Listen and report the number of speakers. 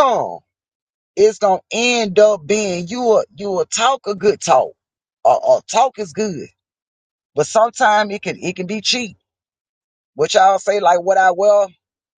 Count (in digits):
1